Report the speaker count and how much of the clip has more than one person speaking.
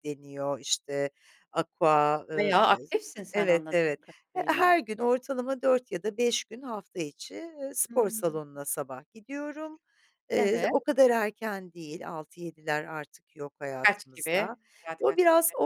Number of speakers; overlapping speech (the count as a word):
two, about 14%